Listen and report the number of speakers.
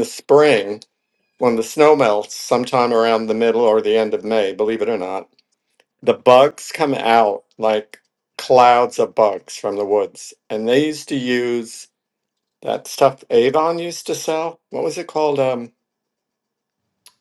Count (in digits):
1